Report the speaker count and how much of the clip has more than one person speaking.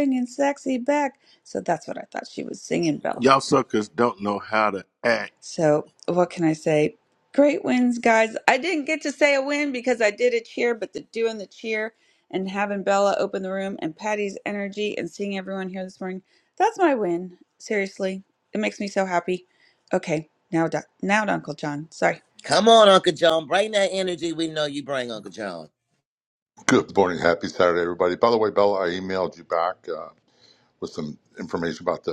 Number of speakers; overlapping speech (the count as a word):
four, under 1%